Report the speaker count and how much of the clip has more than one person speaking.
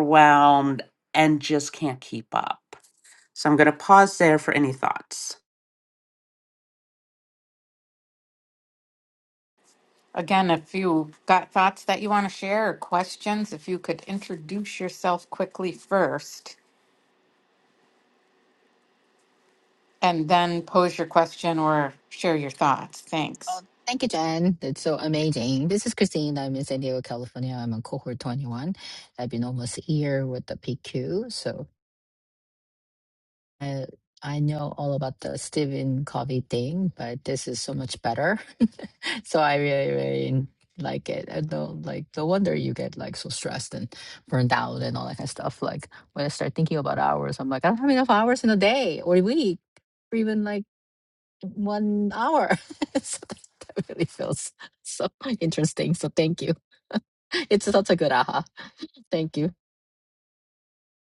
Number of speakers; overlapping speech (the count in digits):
3, no overlap